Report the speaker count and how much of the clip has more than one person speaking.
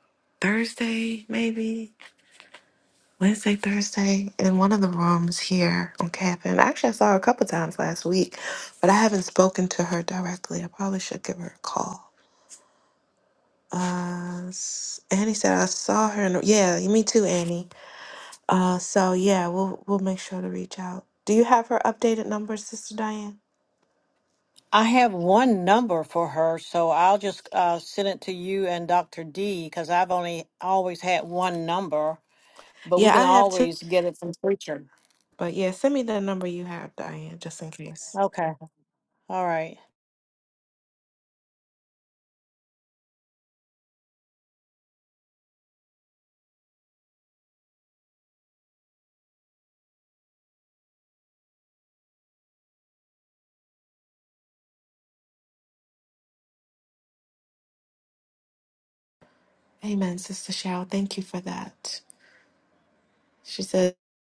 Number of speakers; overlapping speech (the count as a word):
two, about 1%